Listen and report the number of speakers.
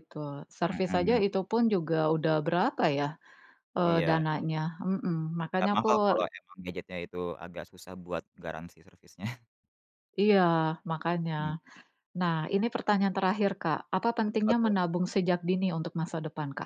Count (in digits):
2